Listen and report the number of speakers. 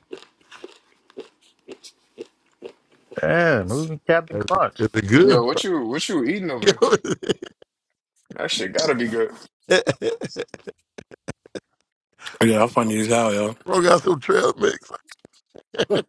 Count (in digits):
4